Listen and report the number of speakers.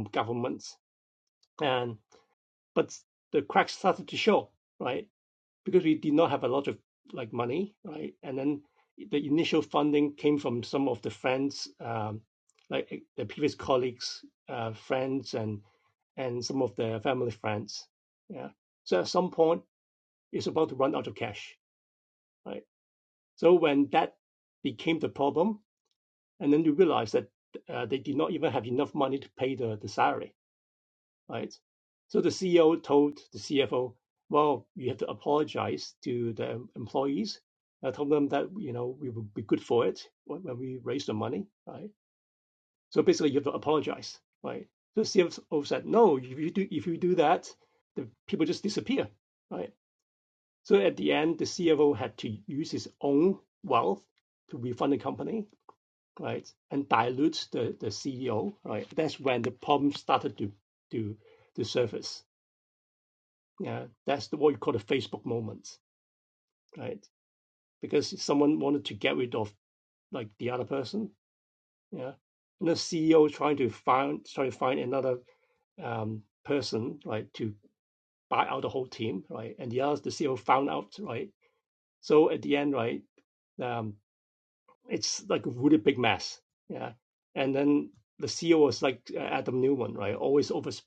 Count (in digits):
1